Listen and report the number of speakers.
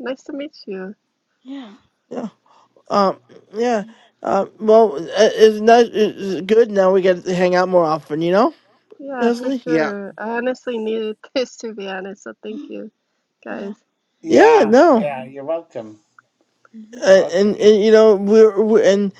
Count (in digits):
4